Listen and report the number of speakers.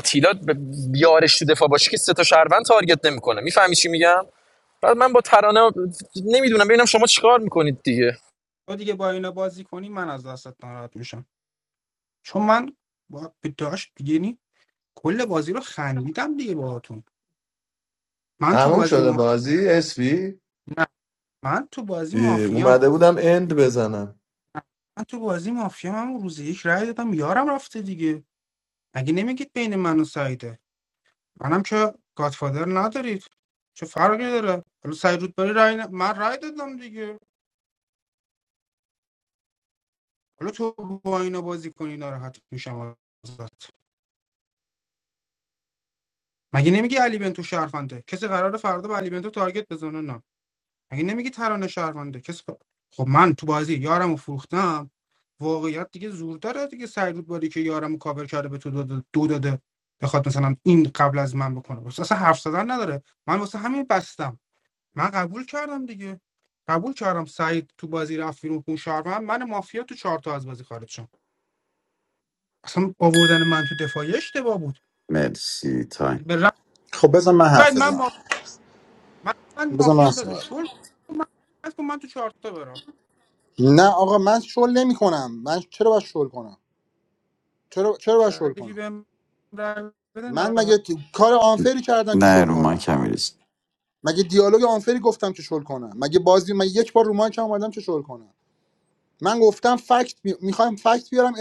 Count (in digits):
5